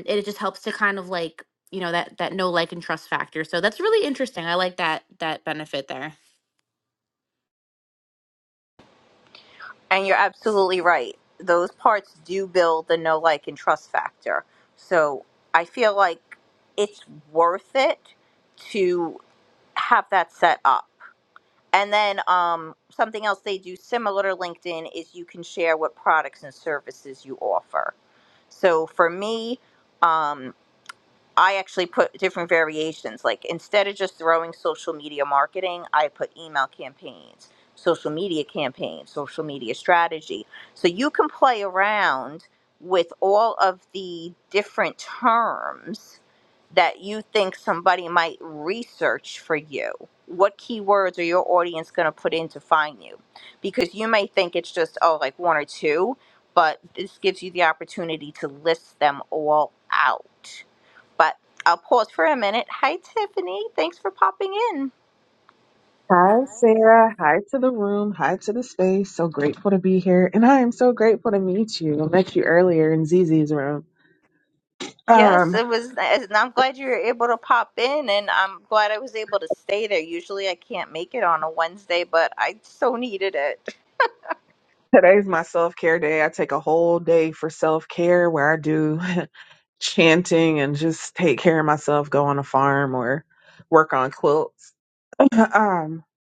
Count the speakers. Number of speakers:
3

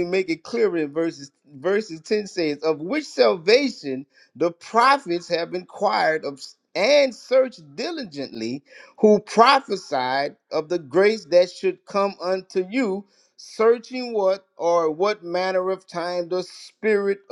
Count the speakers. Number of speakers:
1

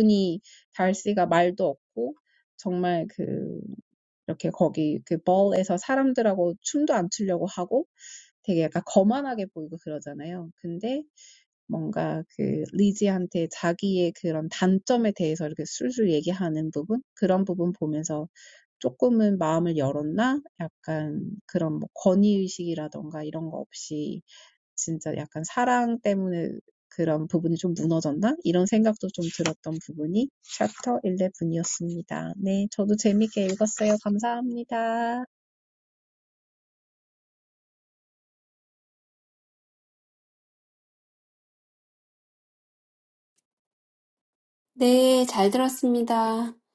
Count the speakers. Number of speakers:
2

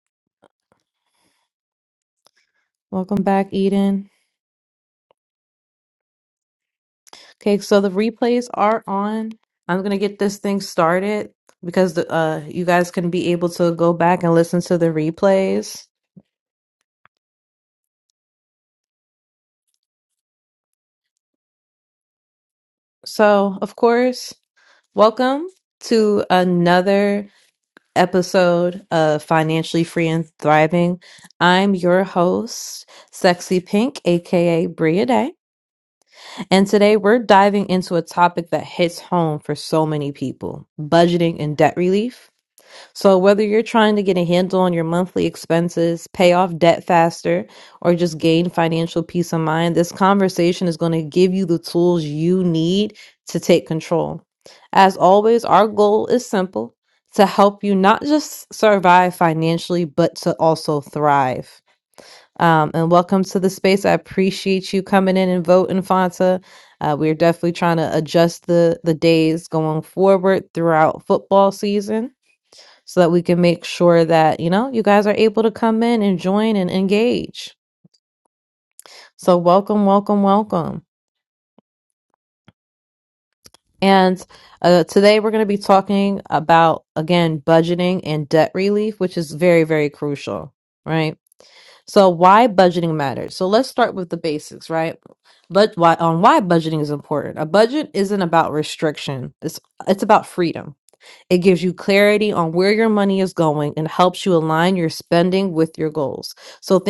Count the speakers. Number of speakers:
1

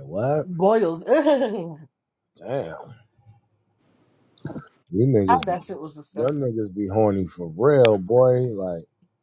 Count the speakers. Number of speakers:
2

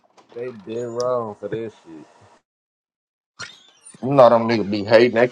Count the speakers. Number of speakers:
2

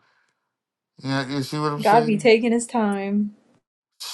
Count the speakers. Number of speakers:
2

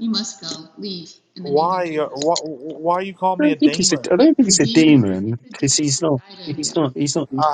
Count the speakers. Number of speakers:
3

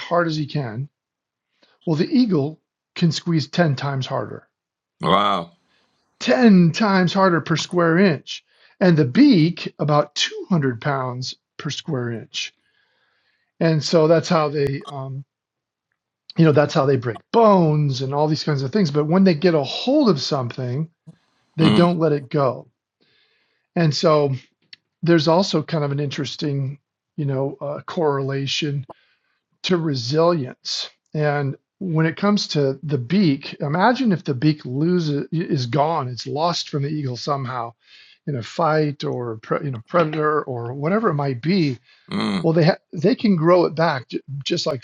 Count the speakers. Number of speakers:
2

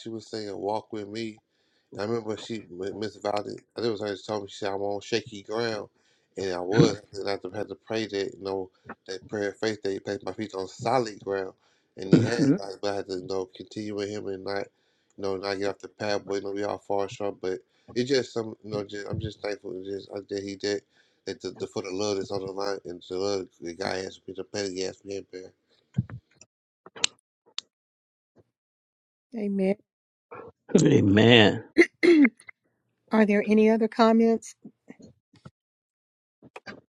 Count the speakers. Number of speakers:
3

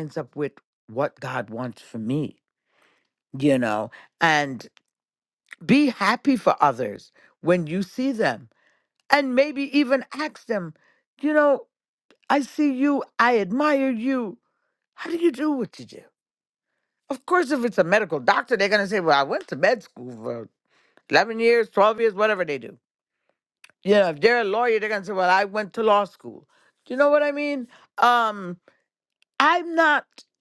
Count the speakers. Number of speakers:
1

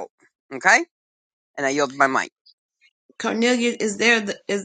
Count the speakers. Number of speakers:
2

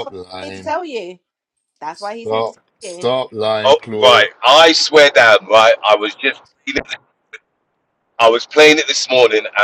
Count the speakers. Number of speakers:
3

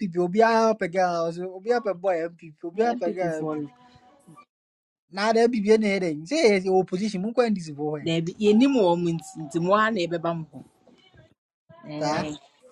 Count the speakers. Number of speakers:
2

